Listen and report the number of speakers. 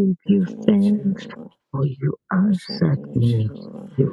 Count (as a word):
two